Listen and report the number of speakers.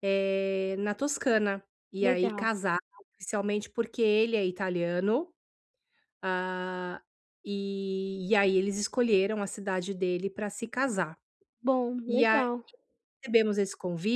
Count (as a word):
two